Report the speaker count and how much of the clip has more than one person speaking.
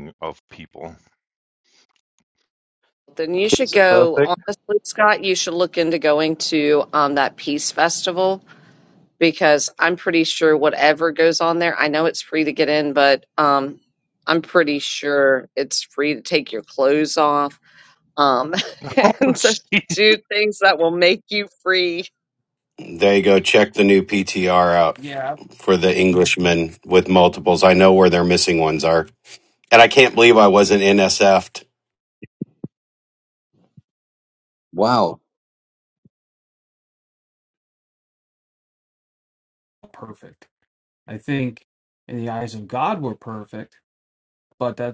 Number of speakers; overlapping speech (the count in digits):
5, about 3%